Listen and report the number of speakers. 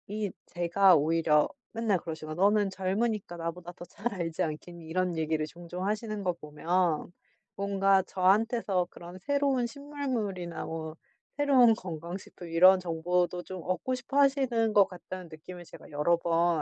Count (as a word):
one